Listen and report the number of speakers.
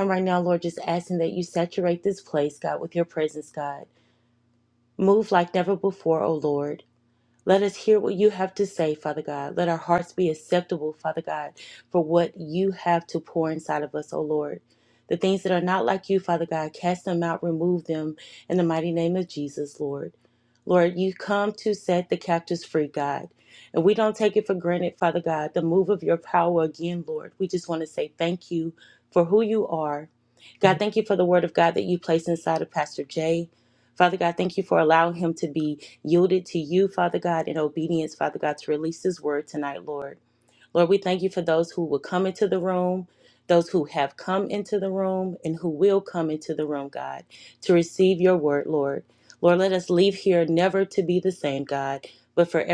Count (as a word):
one